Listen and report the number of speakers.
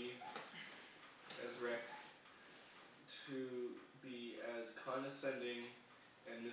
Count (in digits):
1